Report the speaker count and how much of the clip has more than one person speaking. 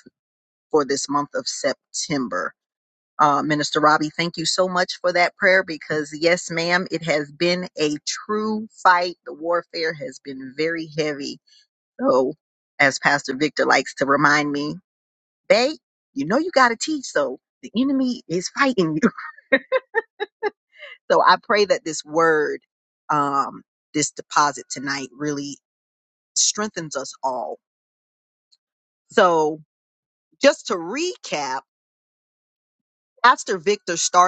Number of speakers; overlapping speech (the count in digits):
1, no overlap